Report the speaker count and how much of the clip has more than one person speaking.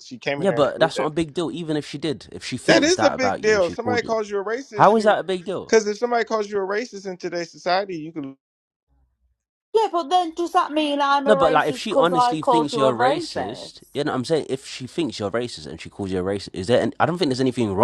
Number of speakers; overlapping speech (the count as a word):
three, about 28%